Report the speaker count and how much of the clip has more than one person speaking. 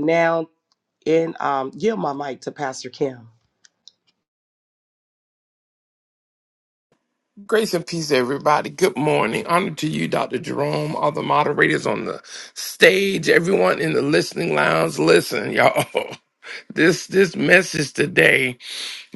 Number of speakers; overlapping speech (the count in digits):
2, no overlap